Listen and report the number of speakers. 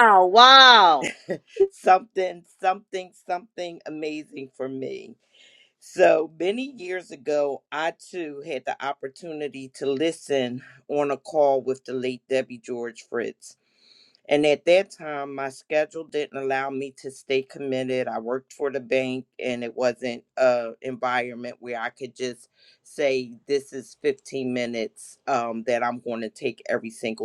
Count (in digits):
2